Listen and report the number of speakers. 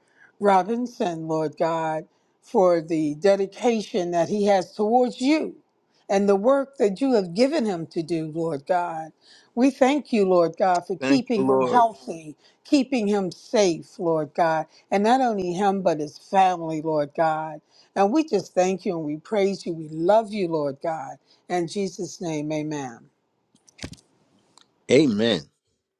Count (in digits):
2